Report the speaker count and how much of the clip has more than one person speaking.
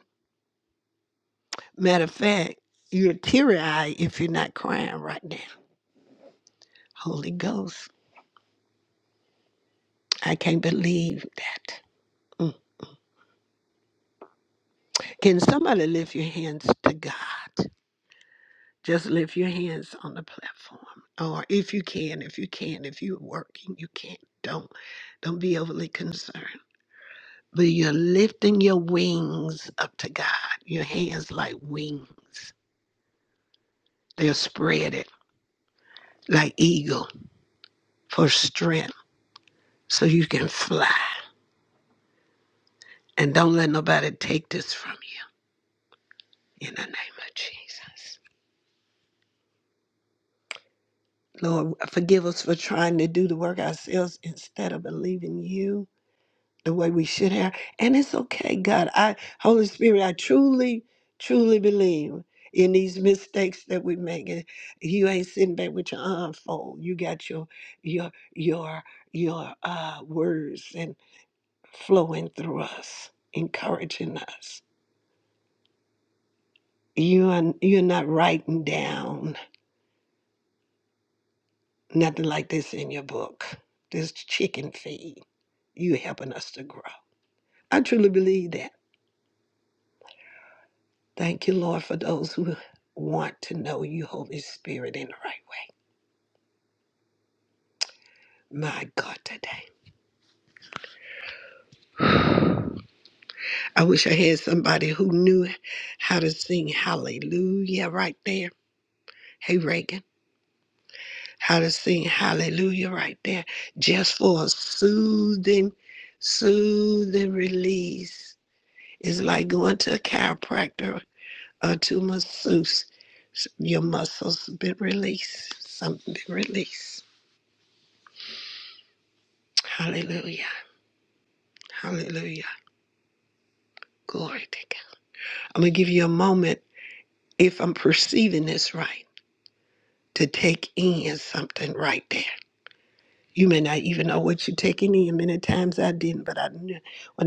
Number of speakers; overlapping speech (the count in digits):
1, no overlap